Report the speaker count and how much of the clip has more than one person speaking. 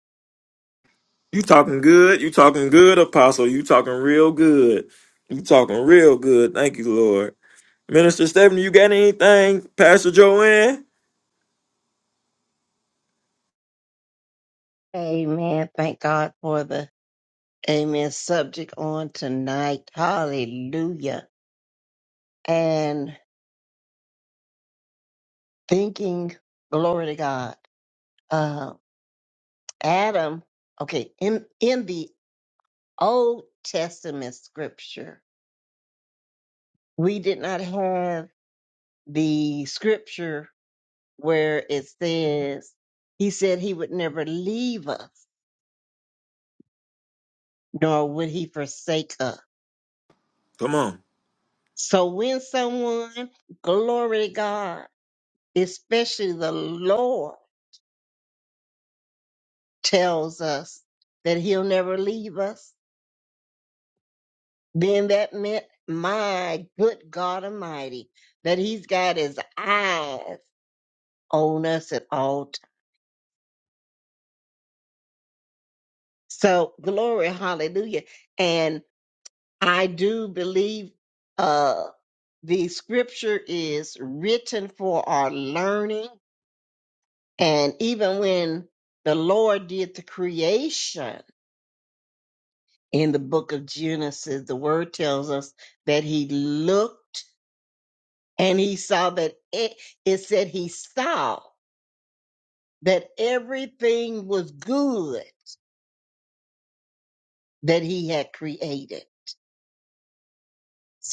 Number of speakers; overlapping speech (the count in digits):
2, no overlap